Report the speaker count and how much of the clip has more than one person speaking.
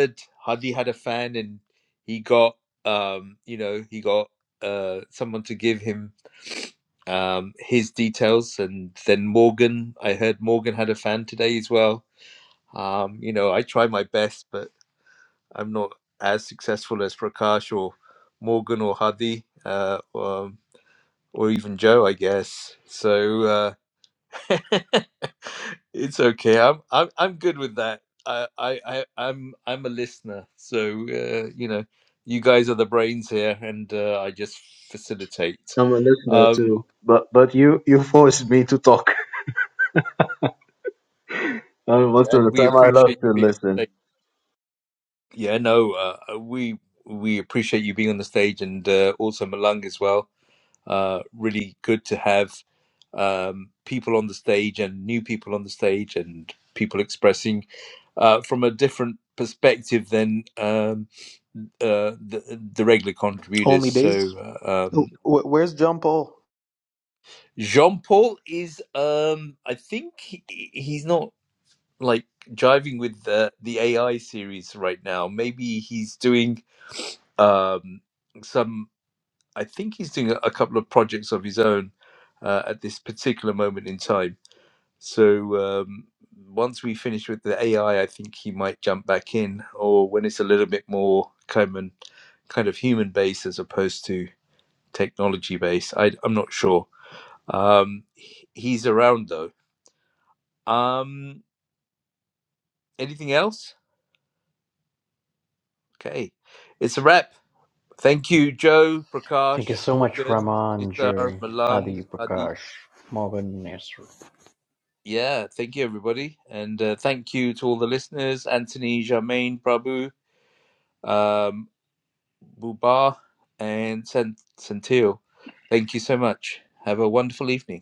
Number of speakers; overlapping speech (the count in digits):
4, about 4%